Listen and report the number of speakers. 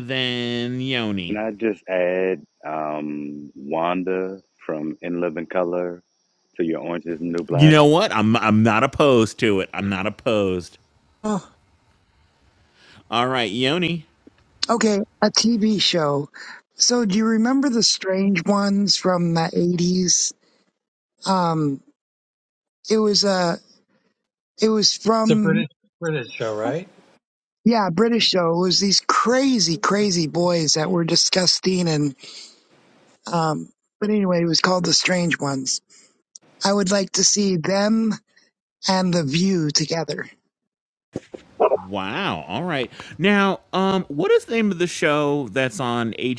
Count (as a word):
four